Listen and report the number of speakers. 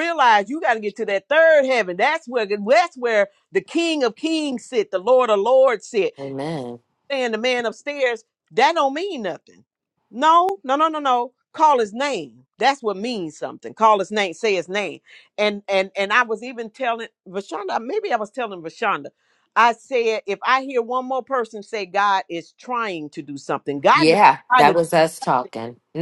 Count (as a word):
two